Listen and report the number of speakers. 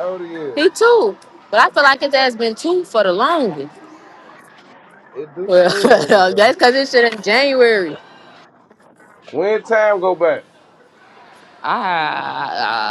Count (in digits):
2